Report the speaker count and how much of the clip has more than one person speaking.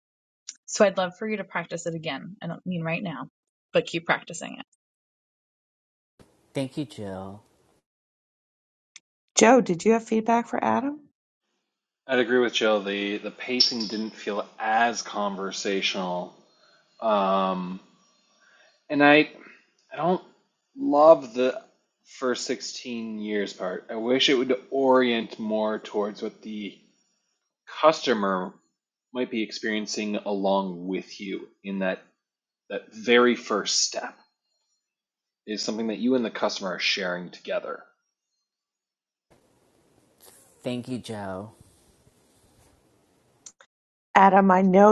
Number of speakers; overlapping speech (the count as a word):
four, no overlap